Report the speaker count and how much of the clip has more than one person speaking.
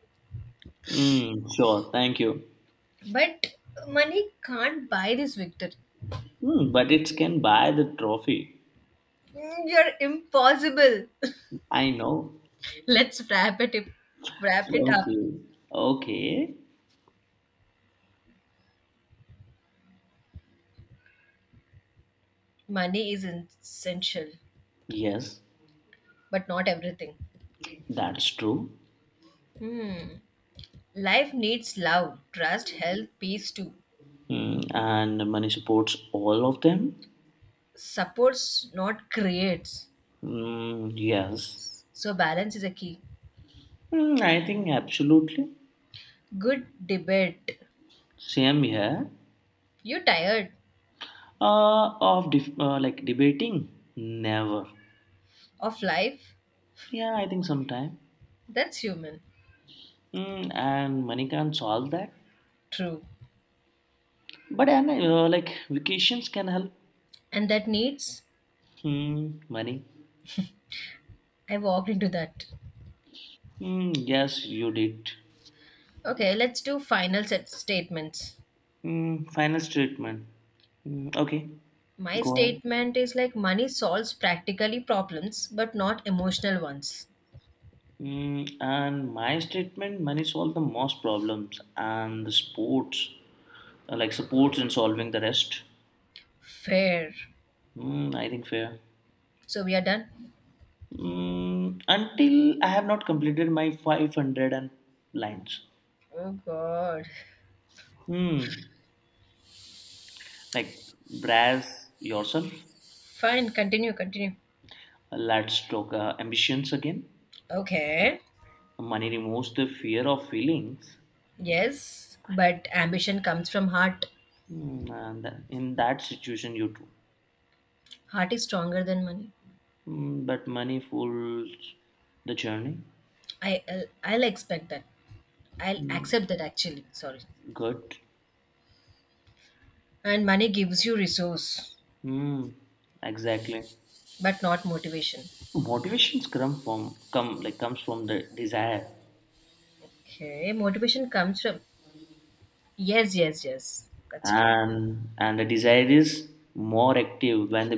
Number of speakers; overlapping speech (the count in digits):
2, about 1%